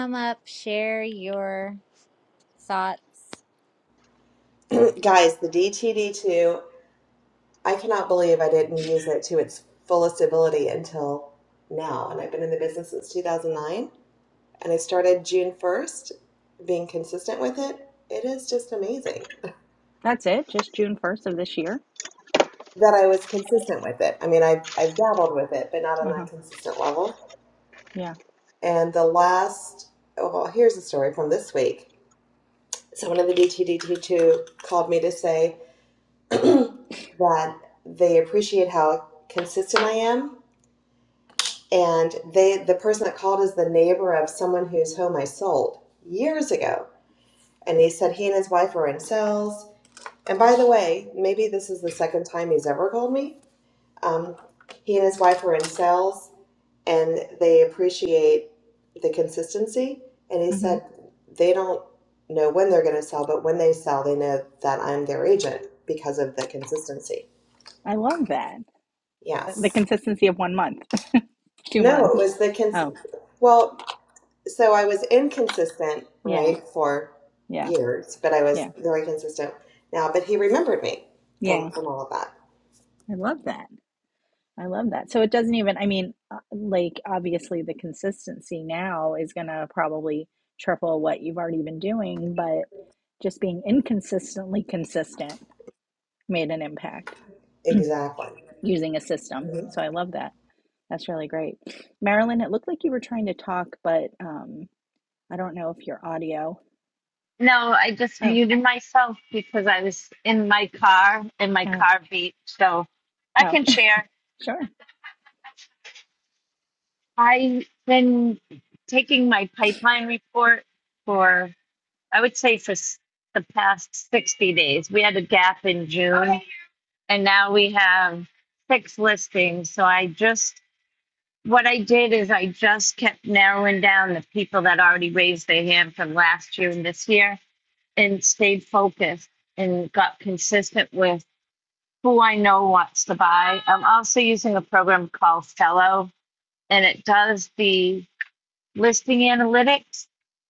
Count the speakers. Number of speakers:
4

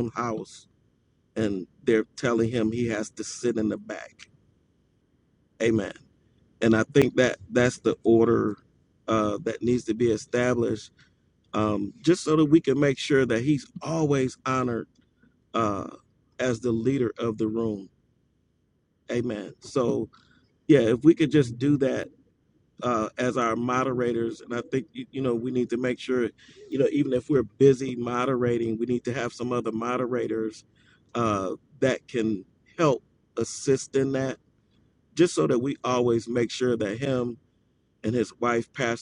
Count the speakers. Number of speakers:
1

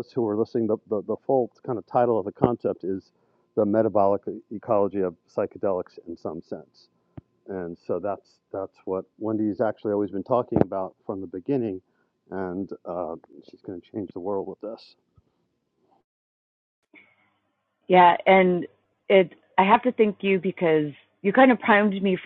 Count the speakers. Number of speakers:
2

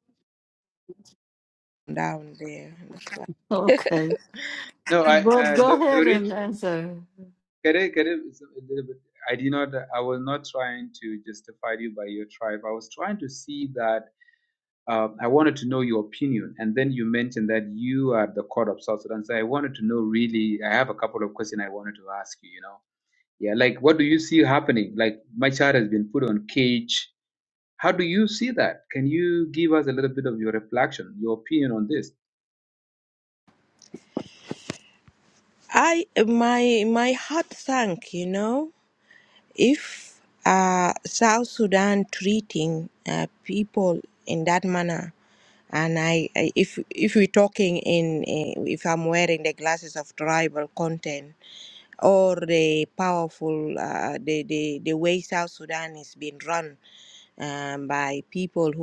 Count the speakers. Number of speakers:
3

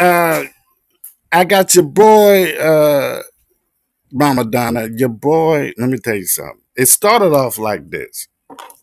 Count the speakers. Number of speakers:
1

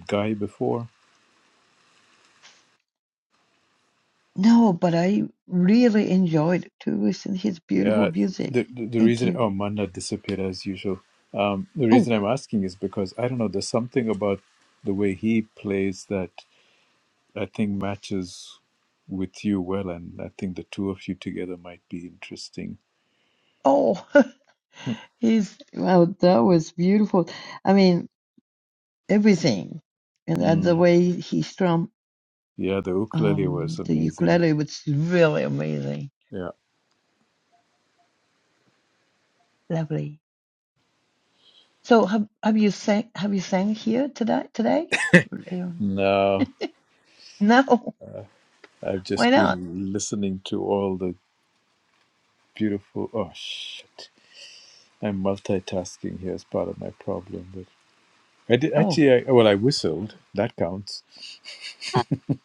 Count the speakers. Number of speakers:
2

